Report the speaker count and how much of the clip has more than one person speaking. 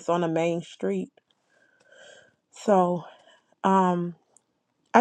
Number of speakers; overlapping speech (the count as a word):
one, no overlap